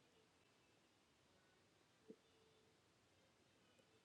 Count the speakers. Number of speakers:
zero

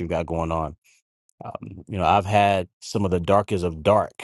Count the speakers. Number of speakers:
one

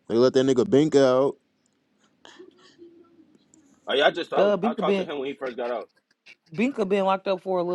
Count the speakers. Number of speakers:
three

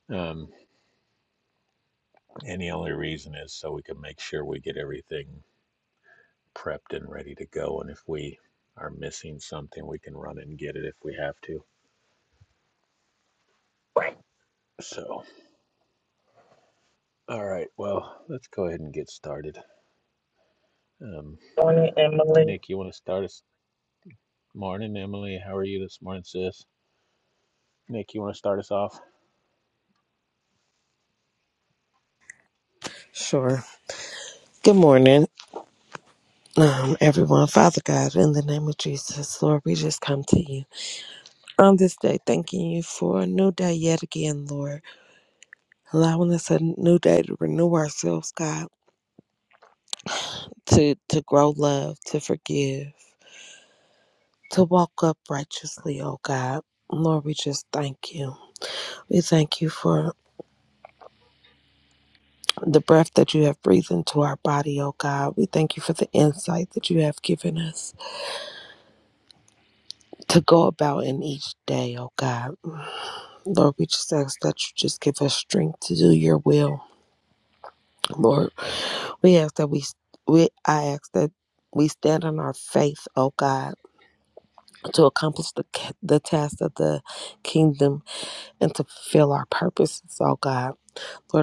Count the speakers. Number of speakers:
three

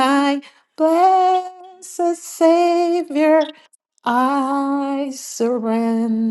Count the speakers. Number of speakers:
one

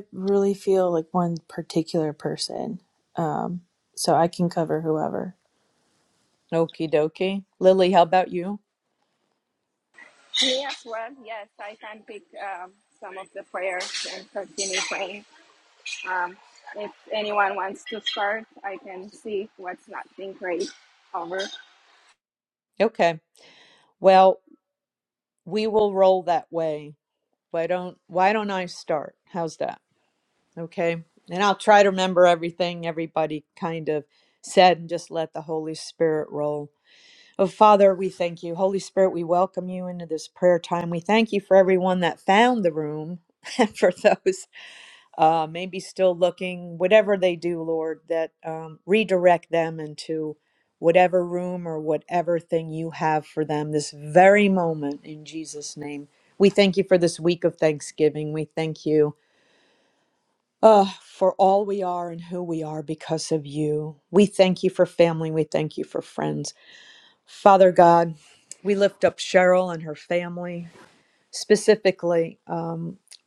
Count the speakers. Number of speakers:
three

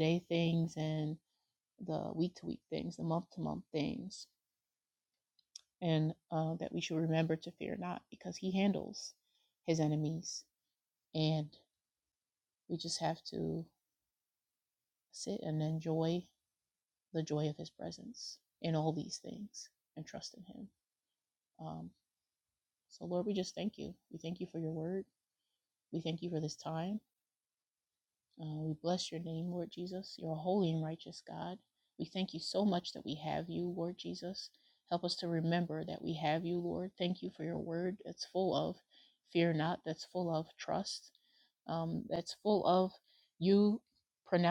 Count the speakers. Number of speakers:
one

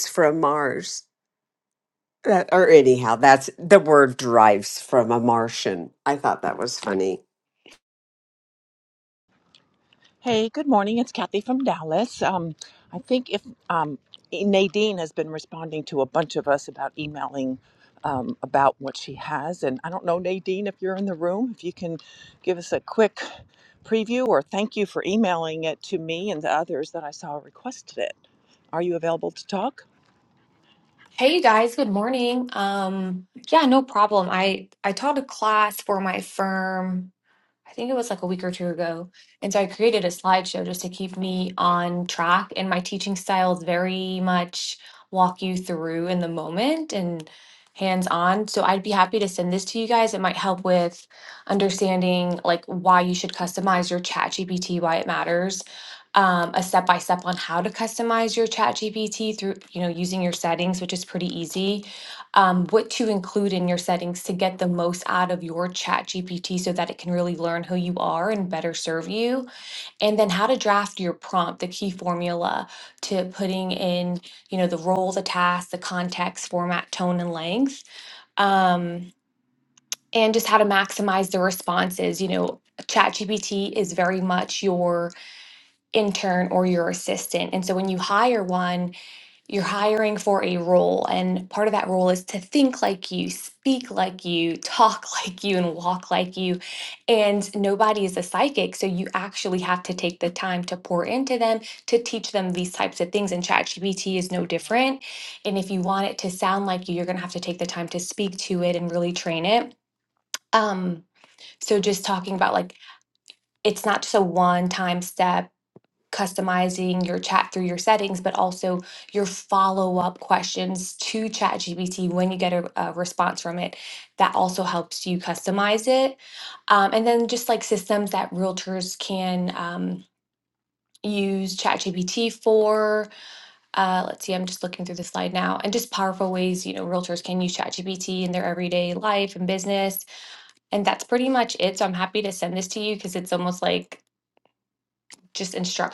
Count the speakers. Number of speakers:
three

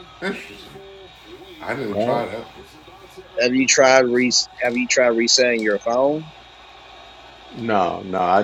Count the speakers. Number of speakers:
three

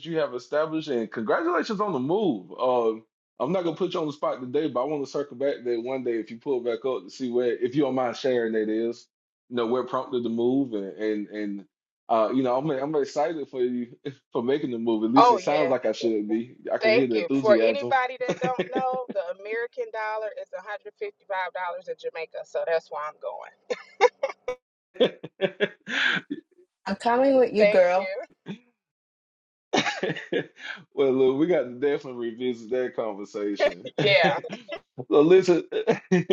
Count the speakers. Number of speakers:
three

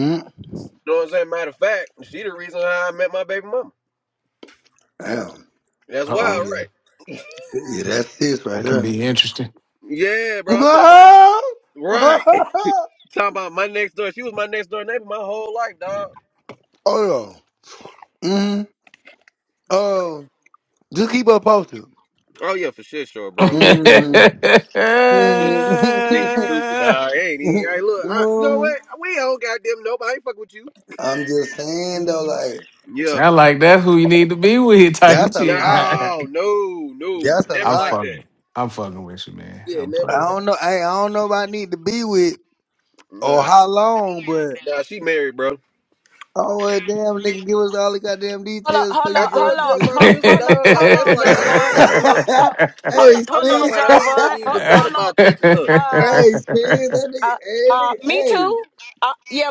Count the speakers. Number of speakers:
four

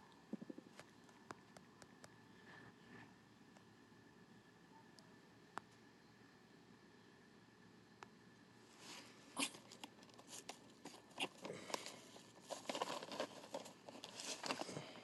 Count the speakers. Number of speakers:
zero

